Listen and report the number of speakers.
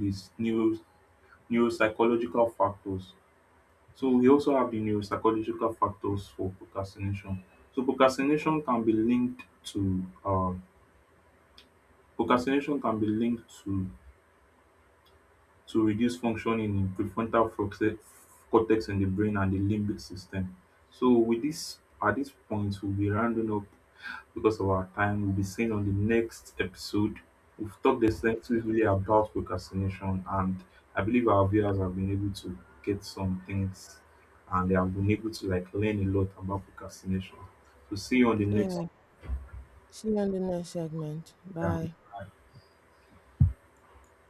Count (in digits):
2